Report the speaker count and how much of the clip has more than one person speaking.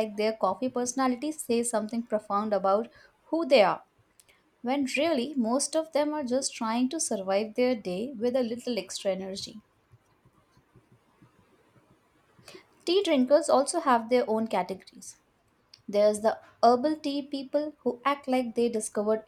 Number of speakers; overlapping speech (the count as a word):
one, no overlap